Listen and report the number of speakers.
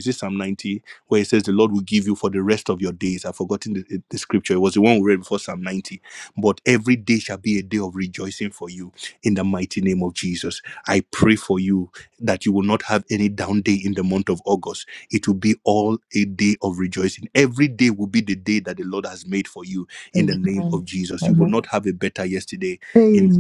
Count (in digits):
2